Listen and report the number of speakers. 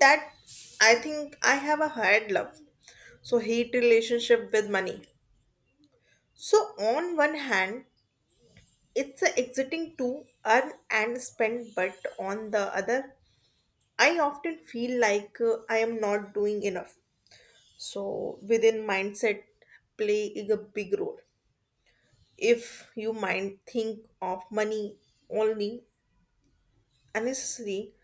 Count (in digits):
1